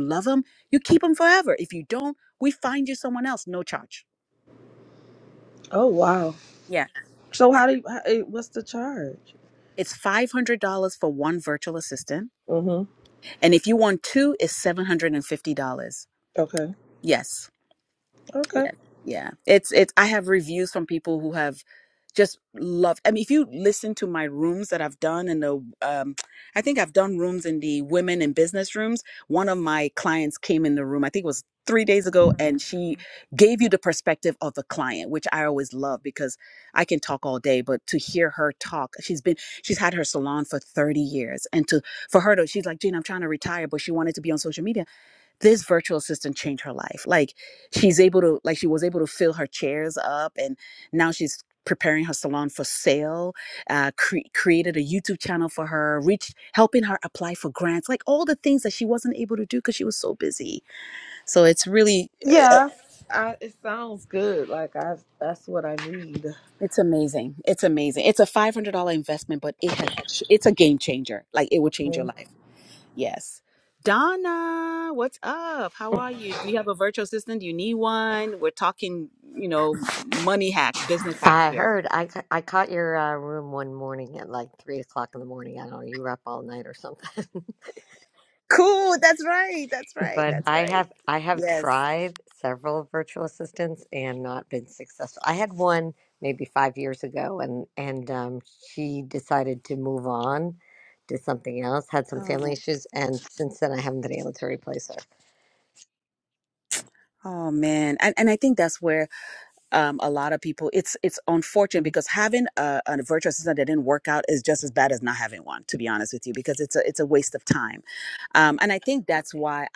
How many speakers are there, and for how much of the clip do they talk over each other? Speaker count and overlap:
3, about 2%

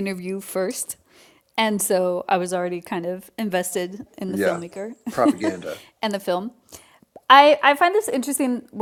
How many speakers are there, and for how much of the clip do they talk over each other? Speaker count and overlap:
2, about 4%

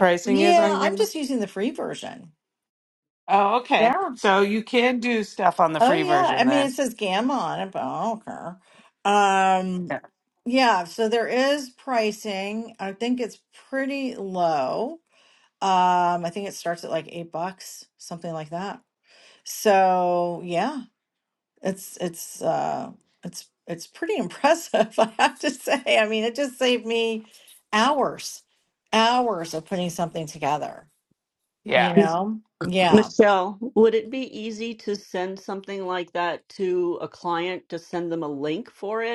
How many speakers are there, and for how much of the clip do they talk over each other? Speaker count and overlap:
3, about 7%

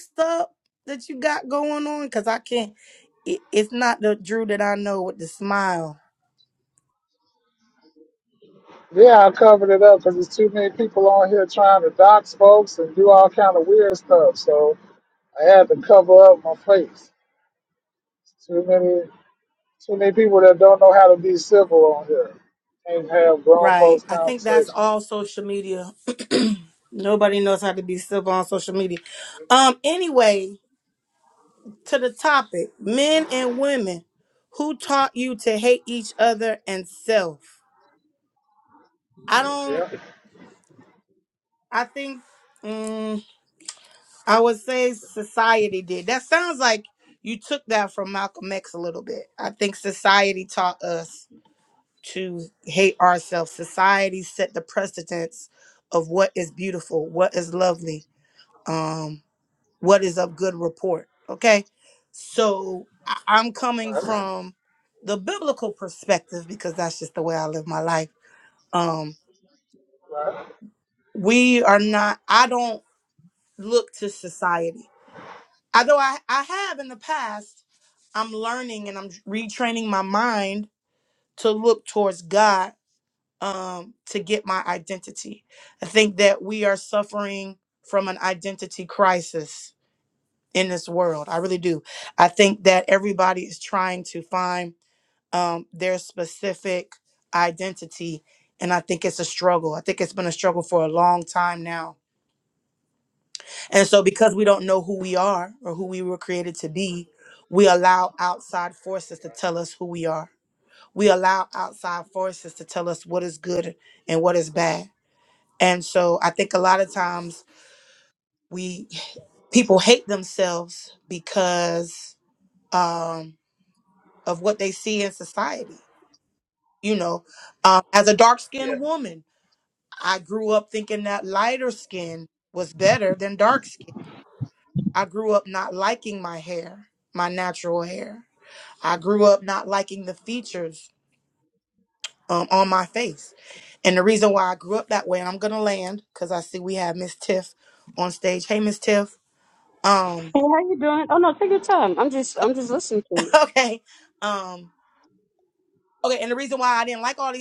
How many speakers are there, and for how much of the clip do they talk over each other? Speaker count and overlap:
3, about 1%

